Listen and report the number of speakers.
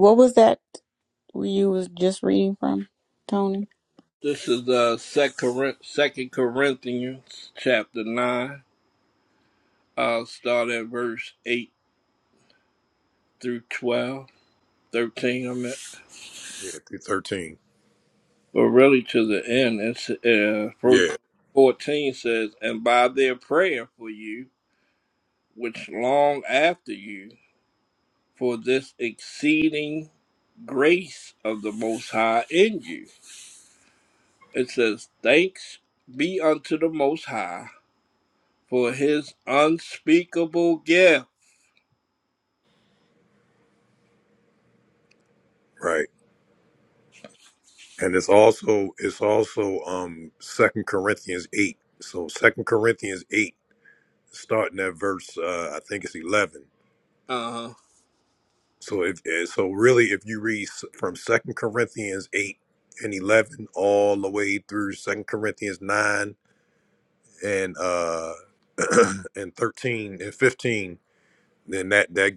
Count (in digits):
3